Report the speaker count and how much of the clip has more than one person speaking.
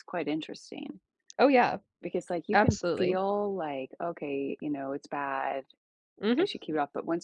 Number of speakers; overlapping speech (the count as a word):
two, about 10%